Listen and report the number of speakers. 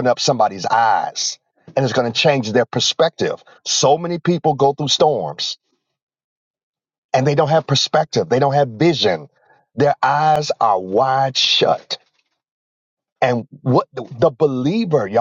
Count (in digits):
1